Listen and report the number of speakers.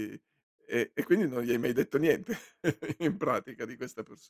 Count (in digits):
1